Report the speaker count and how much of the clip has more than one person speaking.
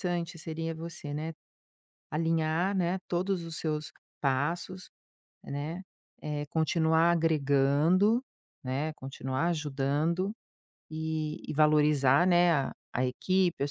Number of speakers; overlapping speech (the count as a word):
one, no overlap